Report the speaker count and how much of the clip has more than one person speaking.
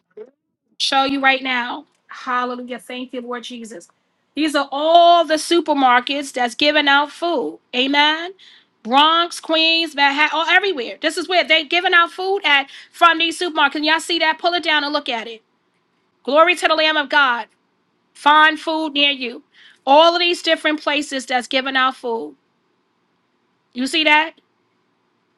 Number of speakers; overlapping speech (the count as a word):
one, no overlap